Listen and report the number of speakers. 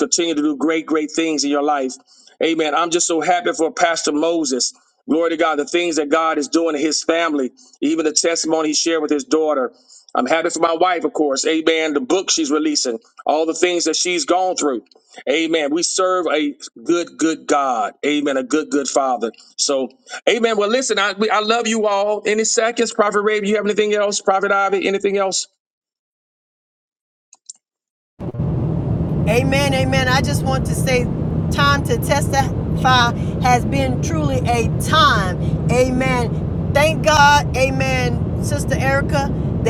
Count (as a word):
two